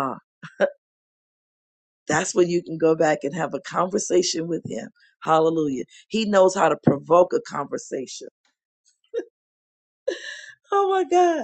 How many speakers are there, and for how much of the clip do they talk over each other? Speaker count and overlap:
one, no overlap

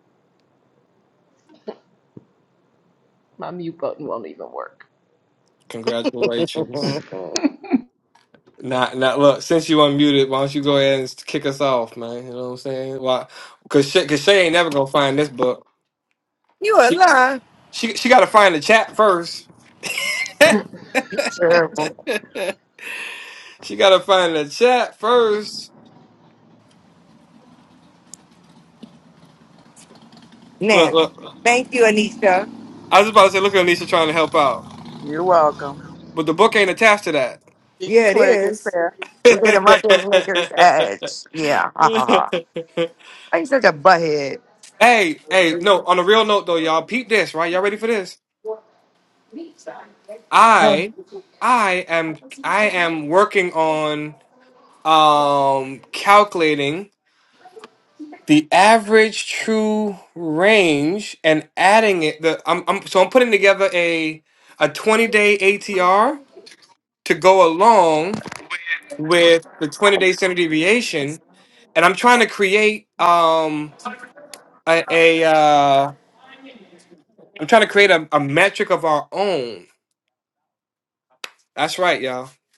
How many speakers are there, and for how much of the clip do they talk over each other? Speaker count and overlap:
four, about 2%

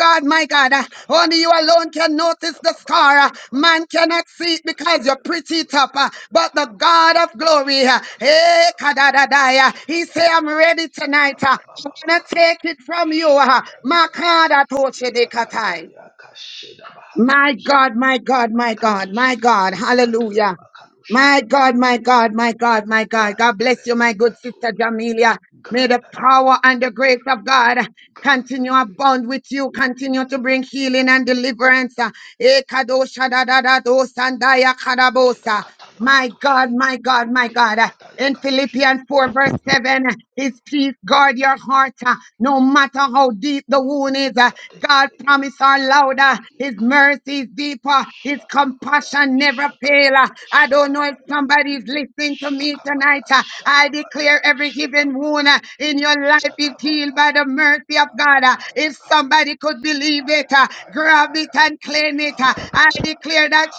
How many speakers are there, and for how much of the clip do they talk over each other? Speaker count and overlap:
two, about 49%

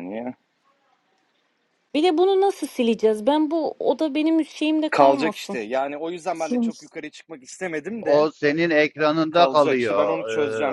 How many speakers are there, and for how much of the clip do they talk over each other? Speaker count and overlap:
three, about 23%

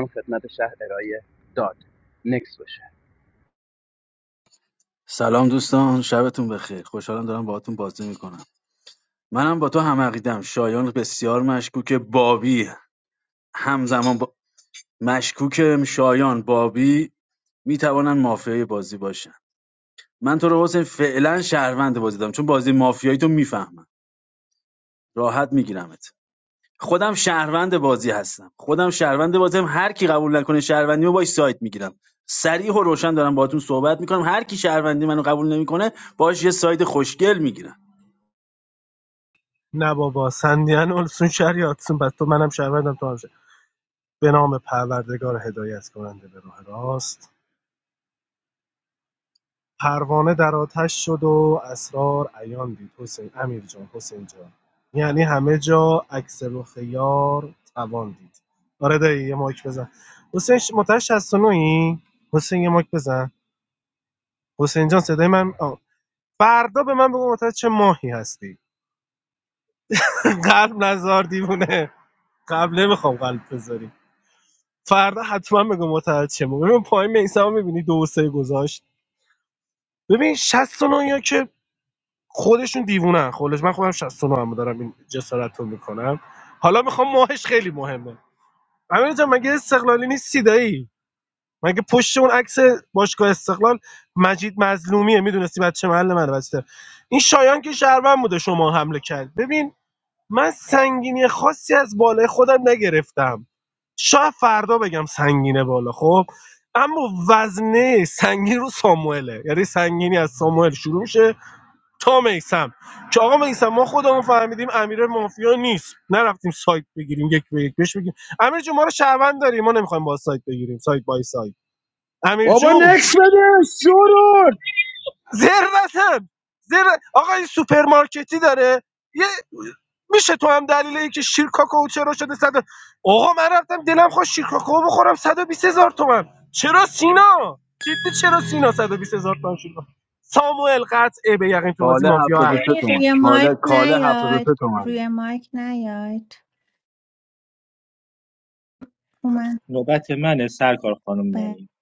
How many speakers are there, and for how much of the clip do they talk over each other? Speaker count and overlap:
six, about 2%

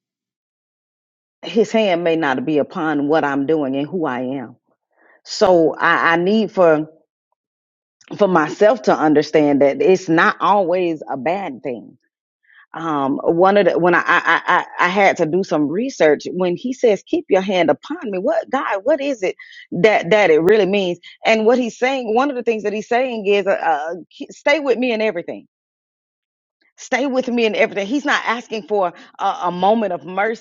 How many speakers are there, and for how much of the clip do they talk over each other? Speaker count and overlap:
one, no overlap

